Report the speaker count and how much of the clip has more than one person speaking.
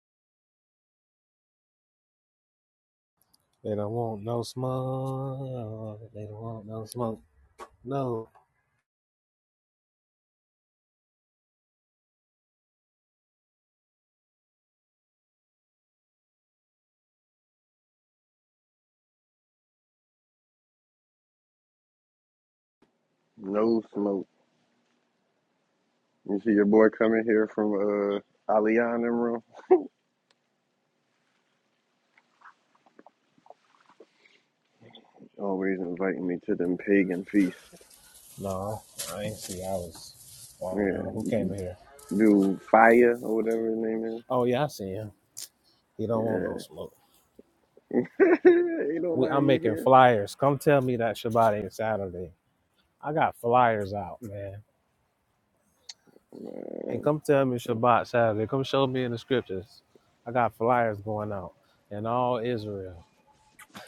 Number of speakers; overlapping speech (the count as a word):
two, about 3%